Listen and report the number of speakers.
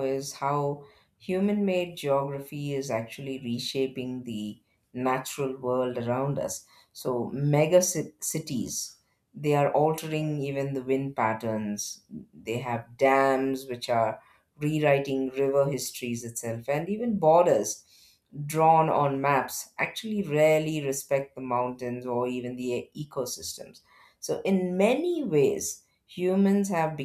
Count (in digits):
1